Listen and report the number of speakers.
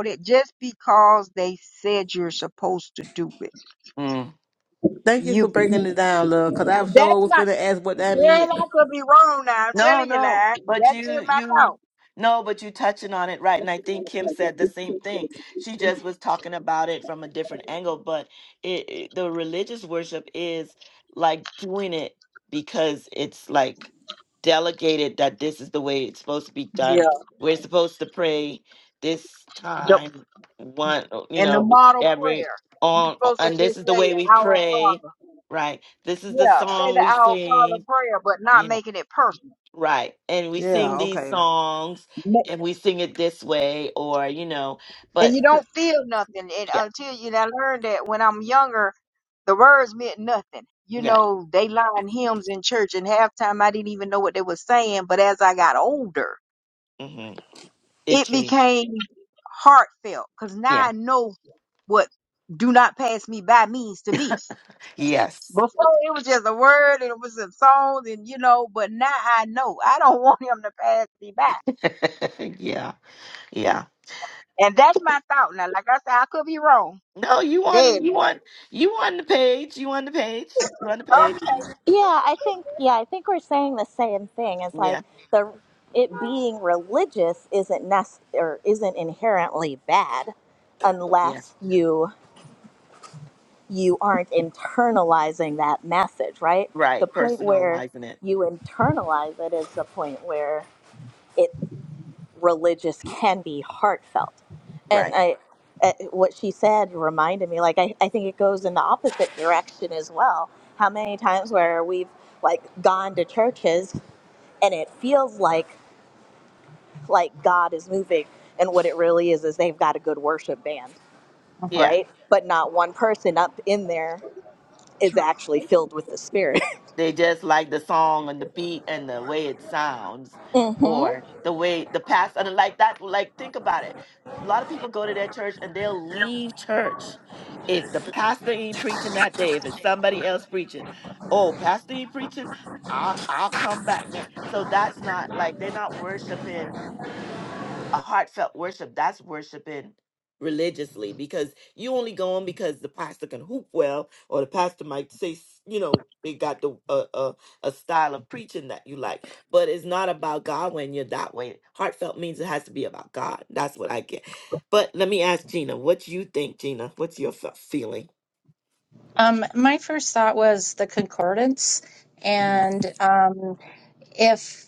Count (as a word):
five